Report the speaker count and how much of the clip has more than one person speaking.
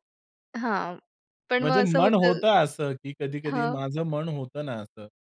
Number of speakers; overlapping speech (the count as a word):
two, about 23%